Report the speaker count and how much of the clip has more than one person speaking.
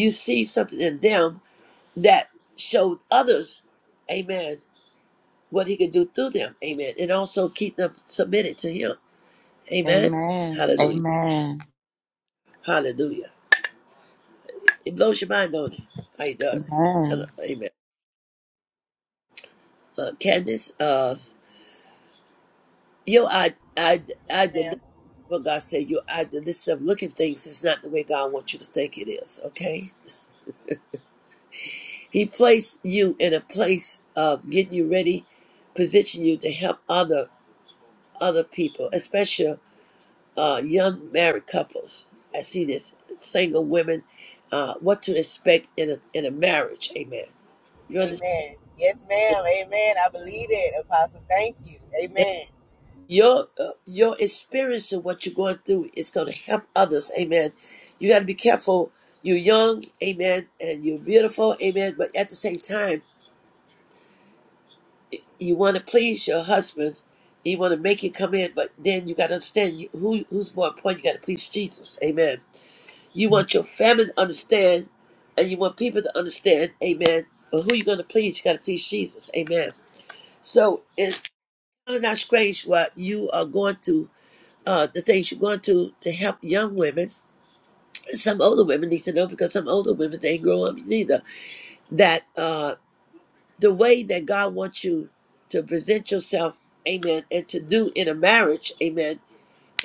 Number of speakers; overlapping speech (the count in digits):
3, about 2%